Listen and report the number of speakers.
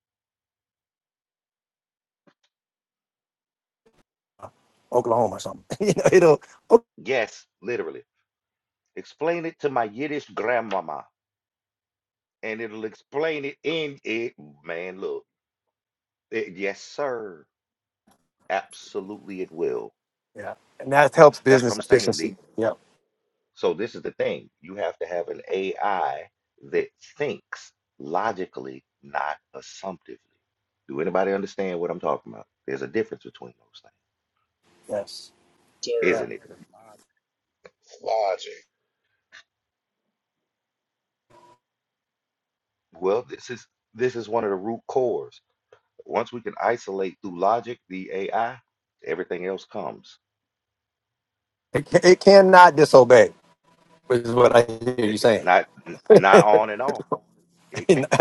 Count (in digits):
3